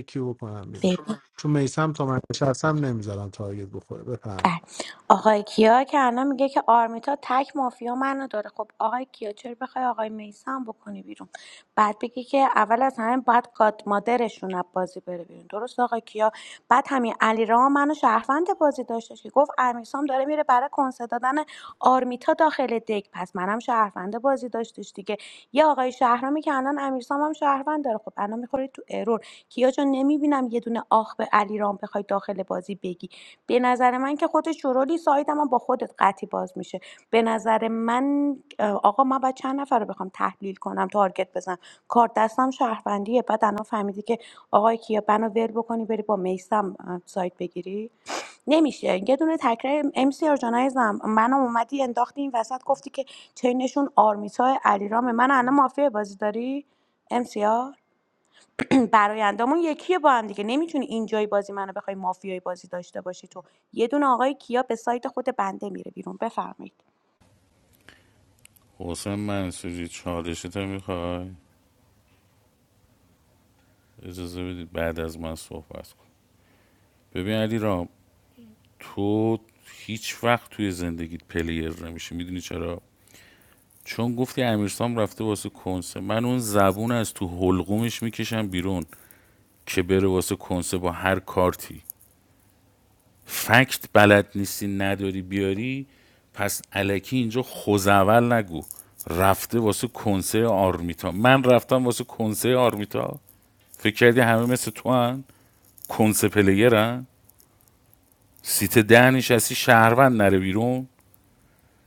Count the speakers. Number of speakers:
three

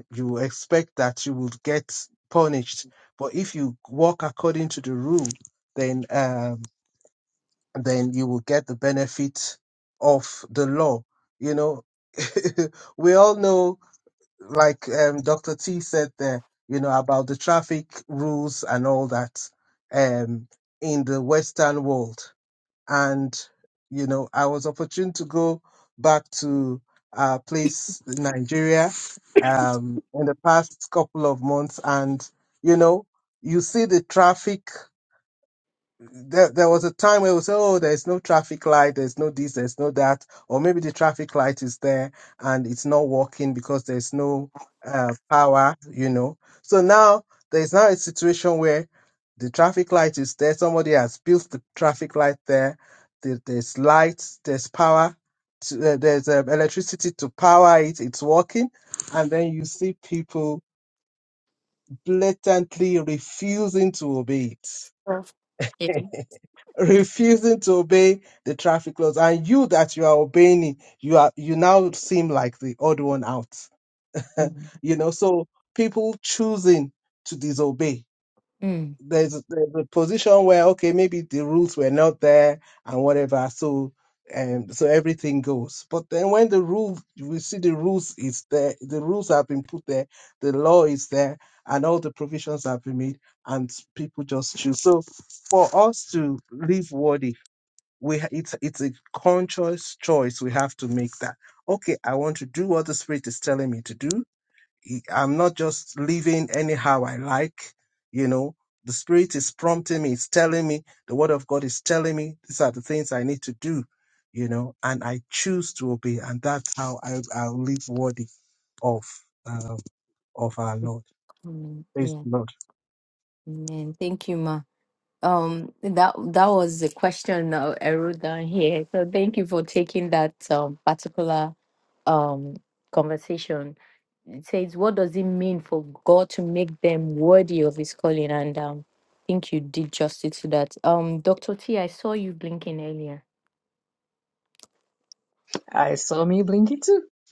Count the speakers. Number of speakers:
three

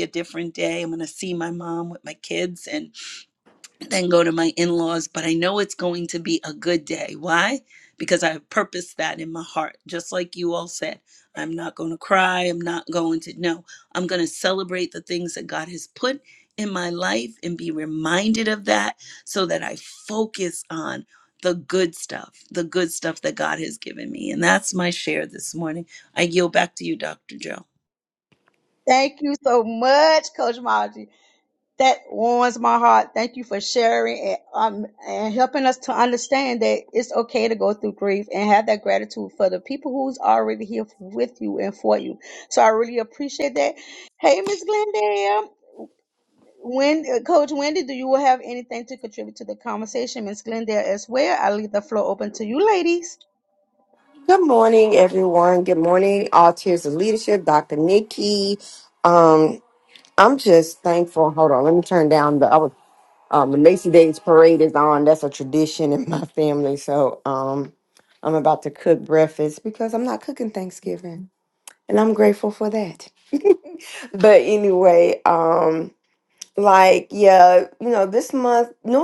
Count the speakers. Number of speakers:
three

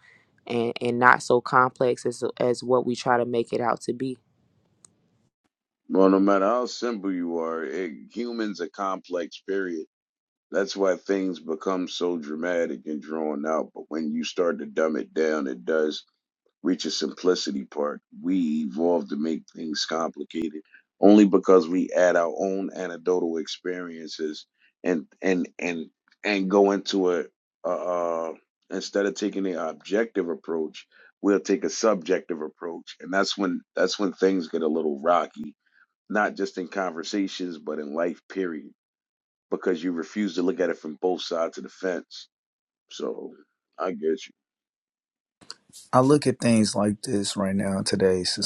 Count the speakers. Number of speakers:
three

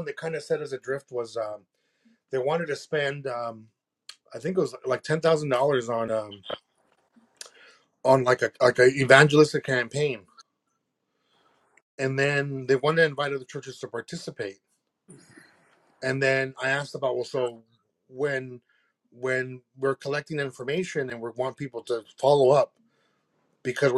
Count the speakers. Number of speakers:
one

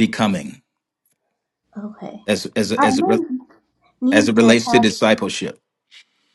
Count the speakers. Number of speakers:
two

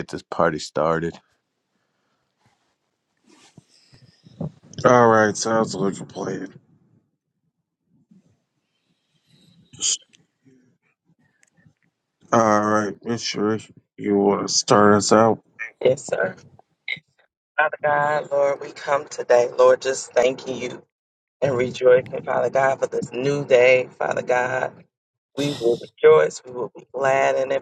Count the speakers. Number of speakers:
three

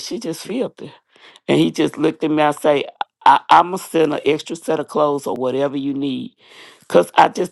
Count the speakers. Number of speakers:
one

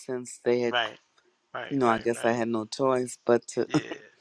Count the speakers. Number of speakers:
two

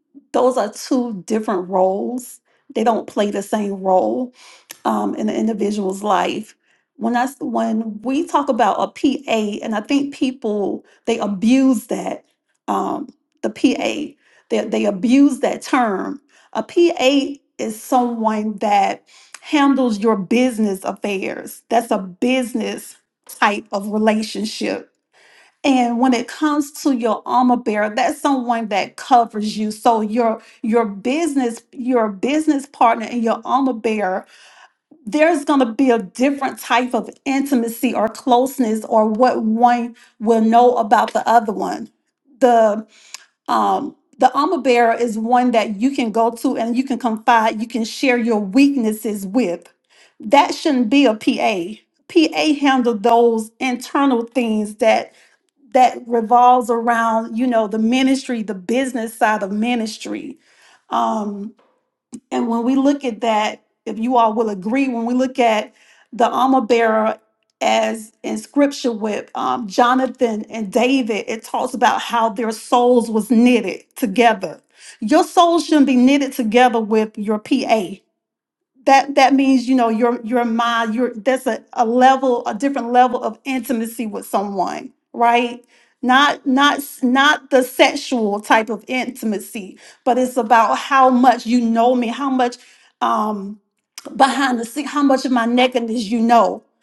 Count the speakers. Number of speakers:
one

